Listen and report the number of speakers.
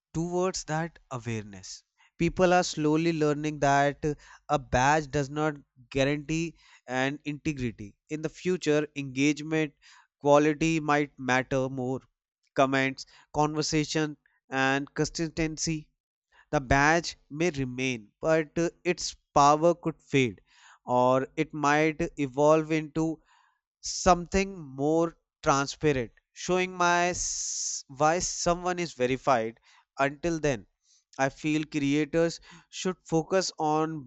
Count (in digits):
1